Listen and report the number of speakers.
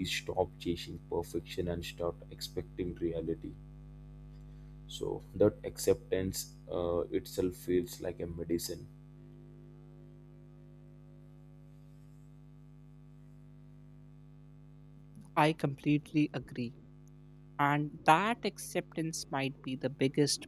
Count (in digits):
2